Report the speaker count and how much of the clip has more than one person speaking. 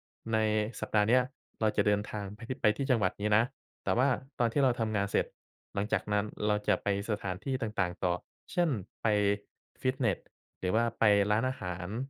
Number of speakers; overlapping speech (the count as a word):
one, no overlap